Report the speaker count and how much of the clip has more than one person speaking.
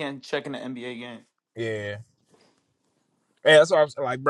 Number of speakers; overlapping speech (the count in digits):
2, no overlap